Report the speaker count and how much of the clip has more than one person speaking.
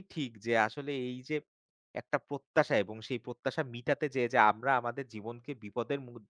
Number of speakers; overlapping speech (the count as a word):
one, no overlap